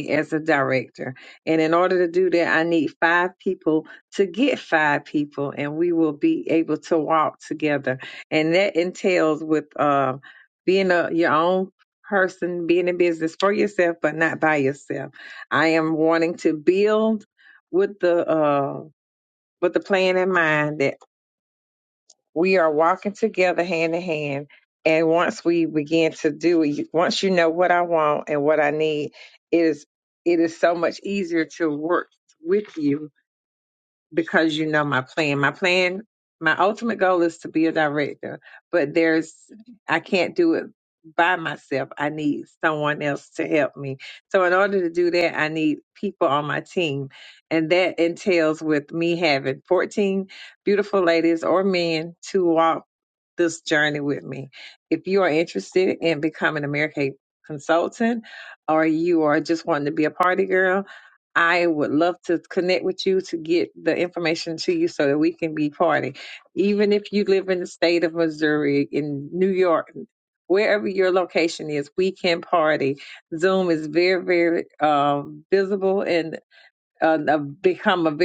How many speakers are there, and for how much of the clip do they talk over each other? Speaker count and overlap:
one, no overlap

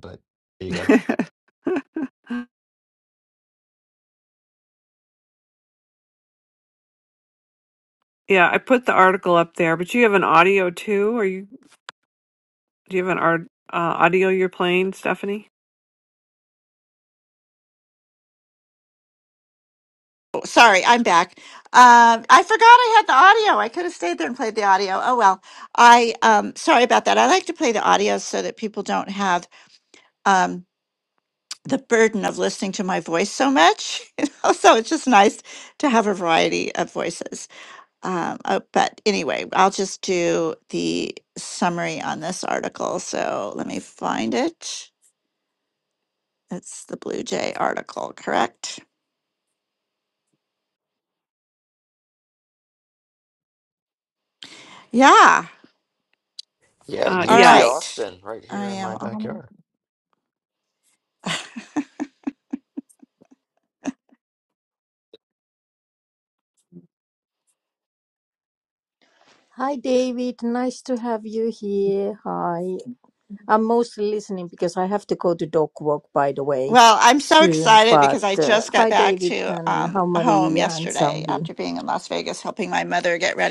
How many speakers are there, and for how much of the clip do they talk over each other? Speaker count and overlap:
four, about 7%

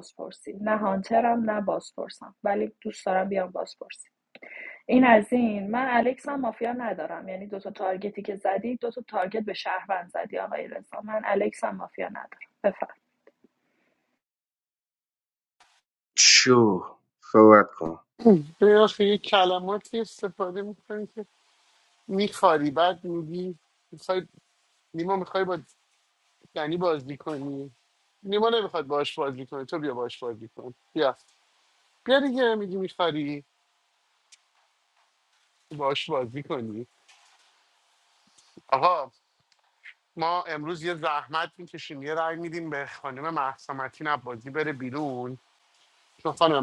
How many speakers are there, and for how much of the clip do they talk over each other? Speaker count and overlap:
three, no overlap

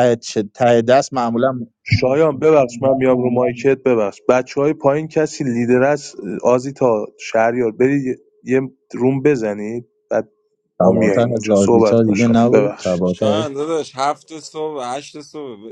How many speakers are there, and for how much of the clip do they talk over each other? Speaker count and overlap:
three, about 16%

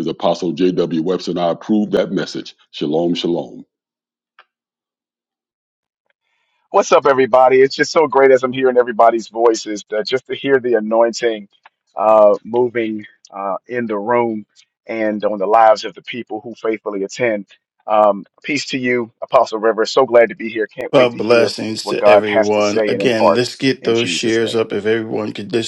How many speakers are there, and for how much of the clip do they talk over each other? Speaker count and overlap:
three, about 11%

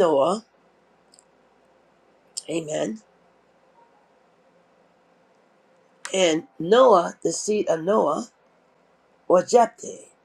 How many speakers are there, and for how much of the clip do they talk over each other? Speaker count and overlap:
one, no overlap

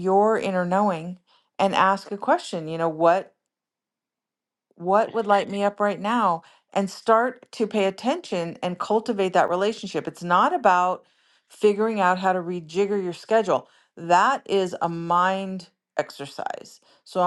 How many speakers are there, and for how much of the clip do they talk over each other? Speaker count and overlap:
one, no overlap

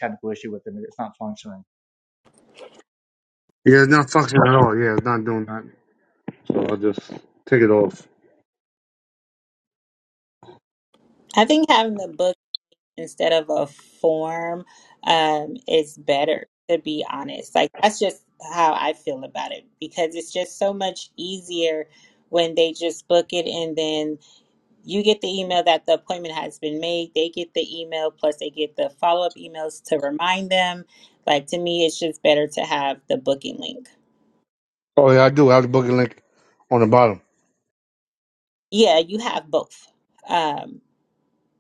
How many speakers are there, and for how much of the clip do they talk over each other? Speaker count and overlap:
three, no overlap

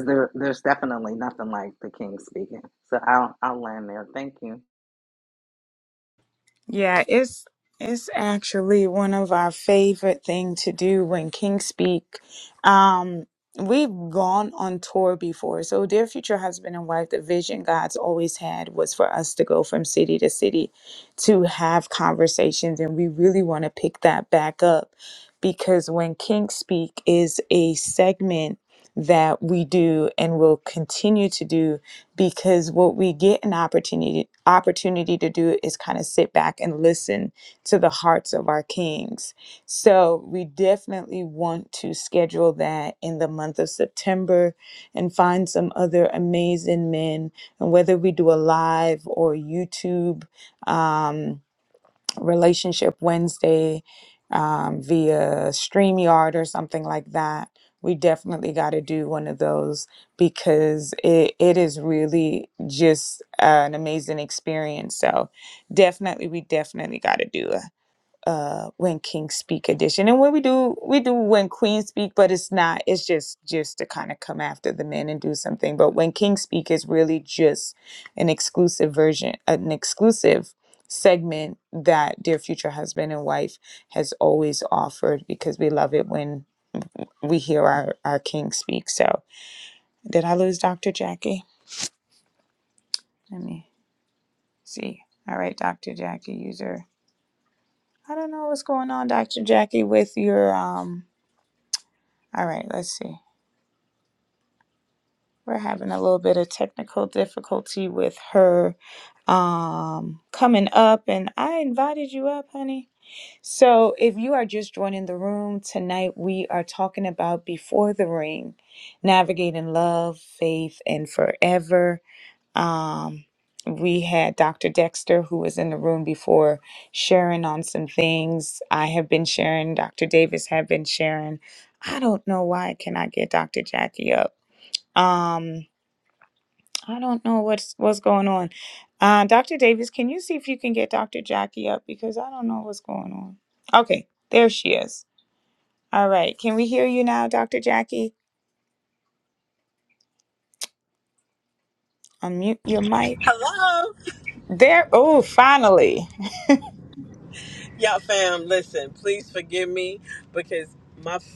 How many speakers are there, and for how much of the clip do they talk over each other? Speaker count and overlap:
three, no overlap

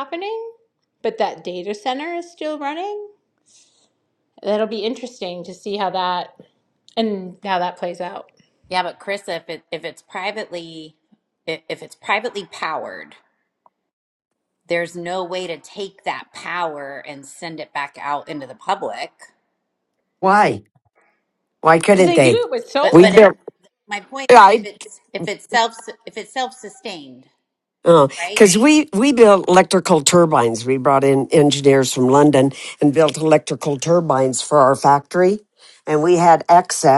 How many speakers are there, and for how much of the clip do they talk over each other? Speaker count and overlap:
three, about 4%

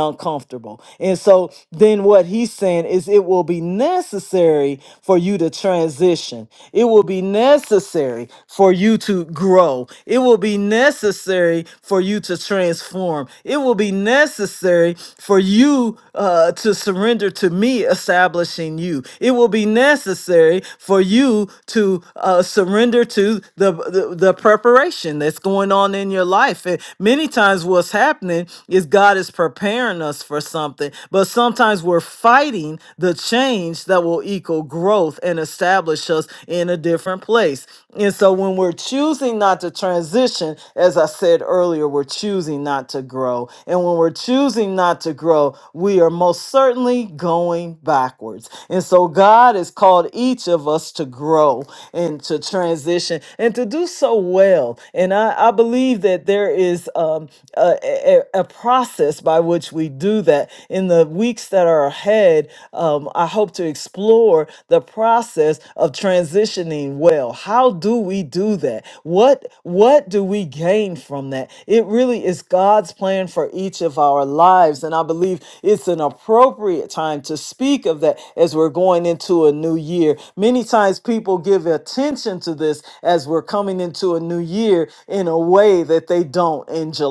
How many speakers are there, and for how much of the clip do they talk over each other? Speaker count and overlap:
one, no overlap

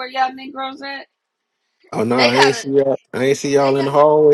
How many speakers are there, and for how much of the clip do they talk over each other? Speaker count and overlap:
two, about 20%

